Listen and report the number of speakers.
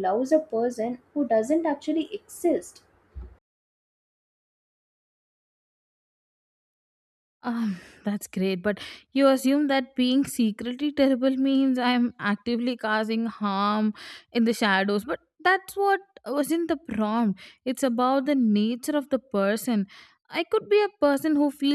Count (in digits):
2